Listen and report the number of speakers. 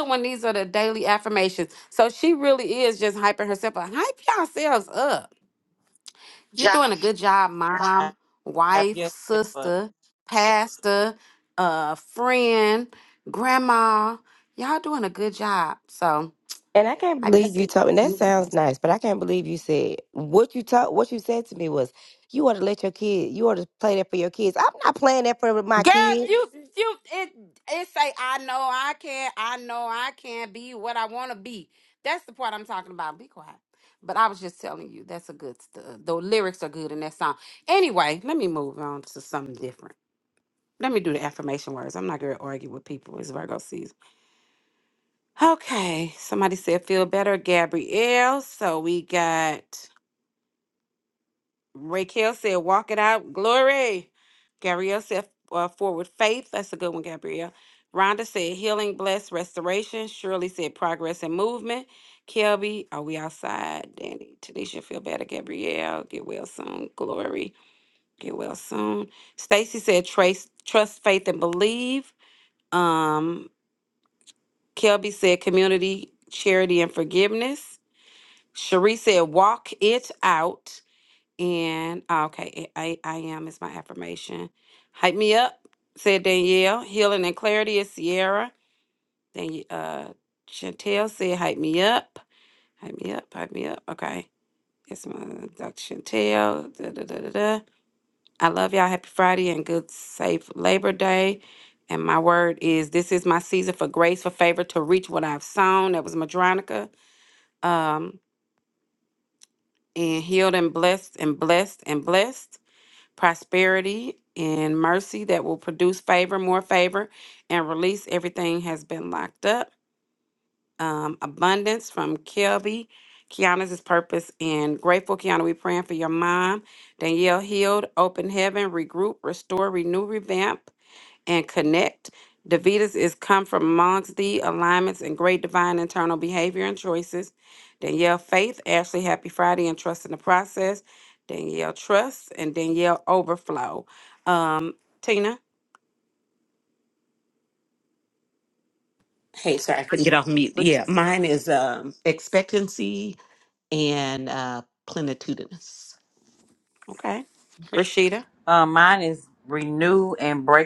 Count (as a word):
four